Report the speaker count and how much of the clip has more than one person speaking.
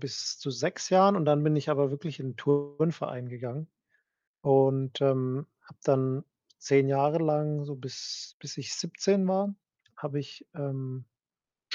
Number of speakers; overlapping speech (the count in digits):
1, no overlap